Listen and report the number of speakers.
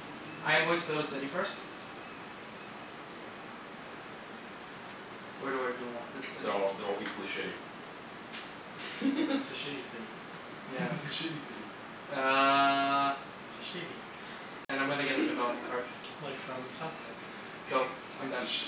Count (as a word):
three